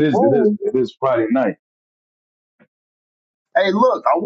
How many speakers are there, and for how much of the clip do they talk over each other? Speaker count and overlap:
2, about 14%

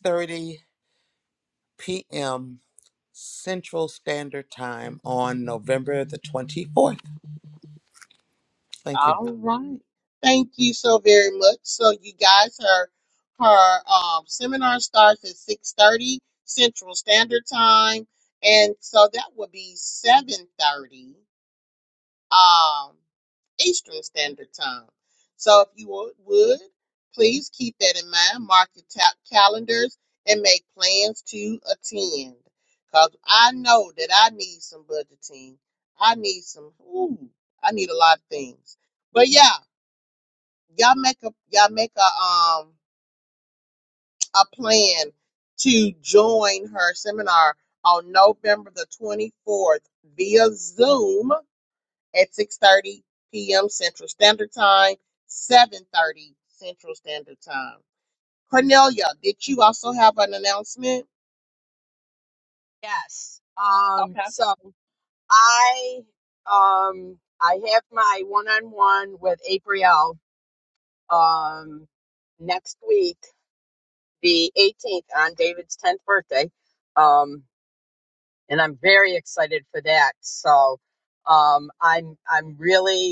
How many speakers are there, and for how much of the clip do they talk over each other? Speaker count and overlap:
3, under 1%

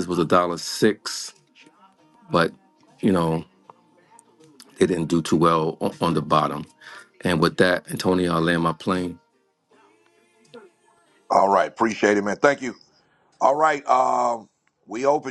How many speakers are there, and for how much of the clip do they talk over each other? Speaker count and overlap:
2, no overlap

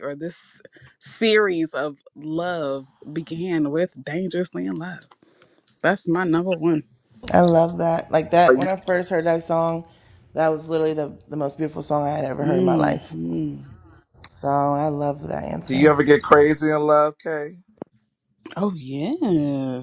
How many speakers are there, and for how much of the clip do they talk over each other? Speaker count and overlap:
3, about 6%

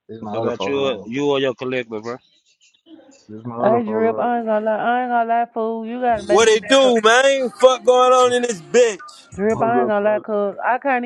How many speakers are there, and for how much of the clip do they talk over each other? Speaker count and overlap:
4, about 30%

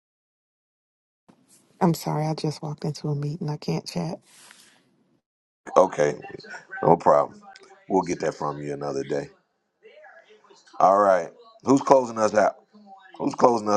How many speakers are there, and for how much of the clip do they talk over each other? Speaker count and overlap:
2, no overlap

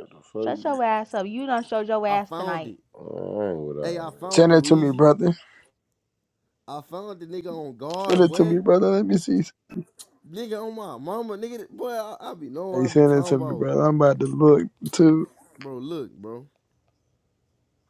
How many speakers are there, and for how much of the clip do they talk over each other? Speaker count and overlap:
4, about 20%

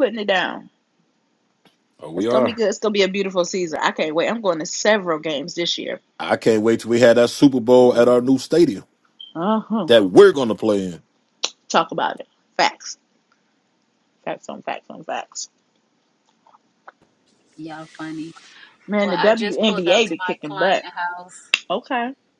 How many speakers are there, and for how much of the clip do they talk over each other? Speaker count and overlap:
3, about 11%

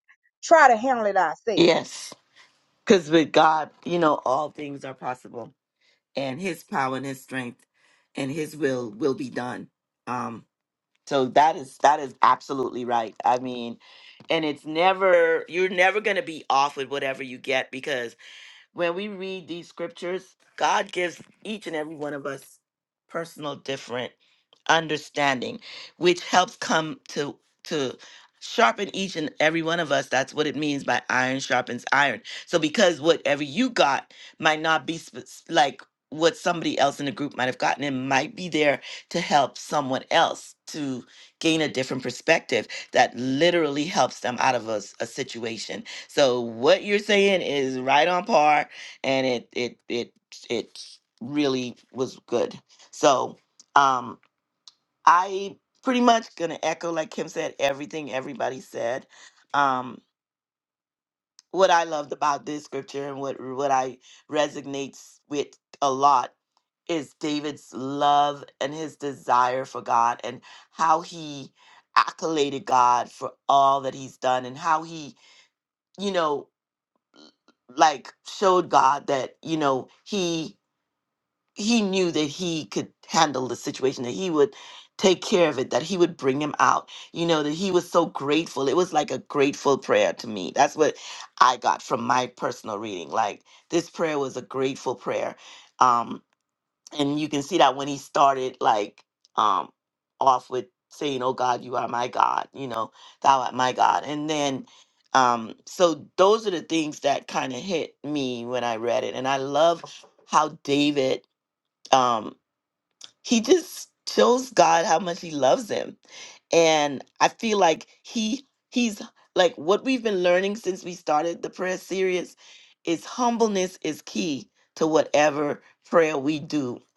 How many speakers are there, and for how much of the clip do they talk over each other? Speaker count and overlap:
2, under 1%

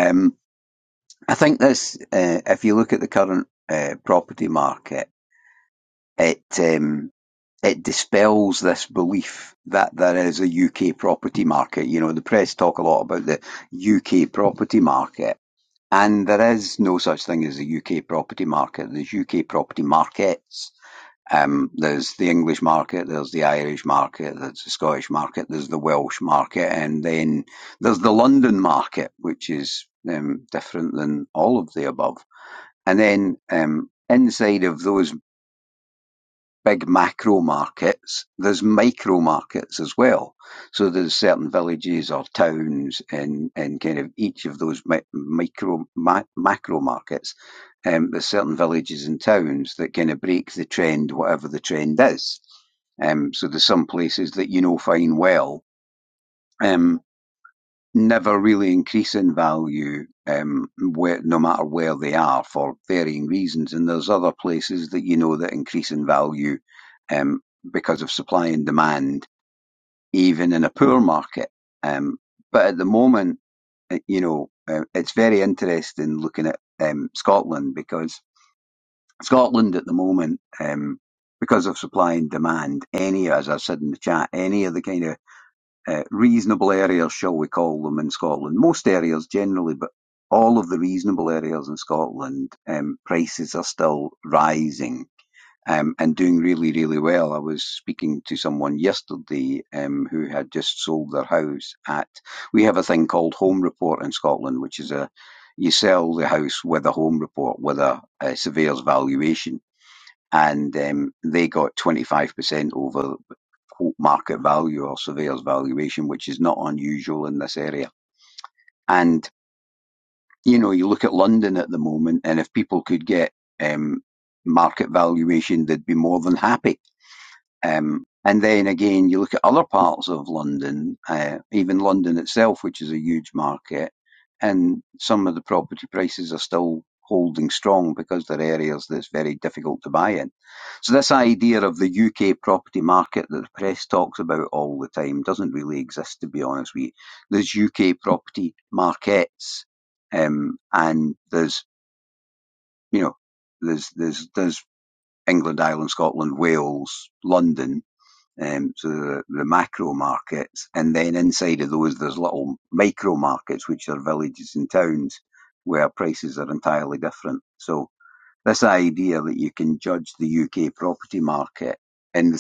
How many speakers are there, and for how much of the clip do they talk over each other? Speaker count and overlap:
1, no overlap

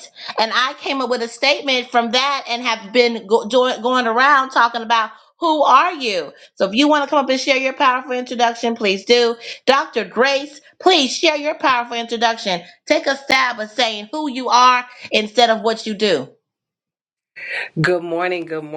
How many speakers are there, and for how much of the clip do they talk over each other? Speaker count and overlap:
2, no overlap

